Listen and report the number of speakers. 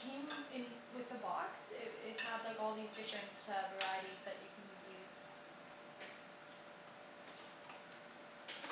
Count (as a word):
one